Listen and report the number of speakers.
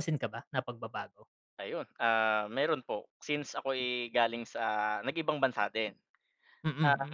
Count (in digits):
2